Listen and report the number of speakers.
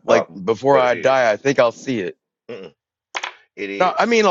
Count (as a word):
two